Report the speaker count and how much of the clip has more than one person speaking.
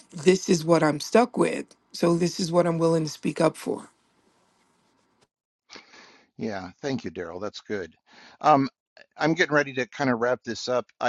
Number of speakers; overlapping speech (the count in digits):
2, no overlap